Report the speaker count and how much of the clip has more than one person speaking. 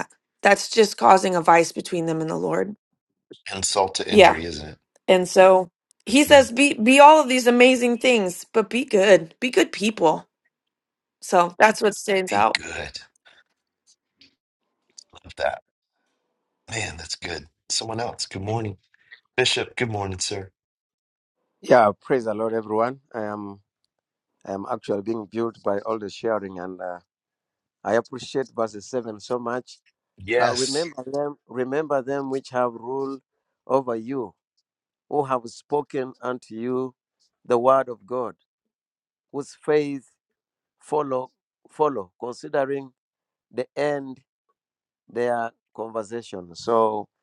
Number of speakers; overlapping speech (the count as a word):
three, about 2%